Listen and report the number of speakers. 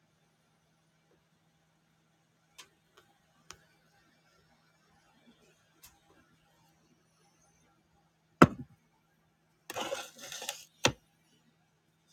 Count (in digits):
0